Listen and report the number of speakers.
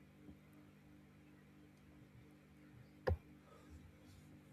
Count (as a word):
zero